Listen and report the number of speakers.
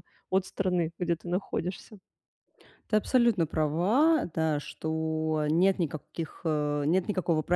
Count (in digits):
2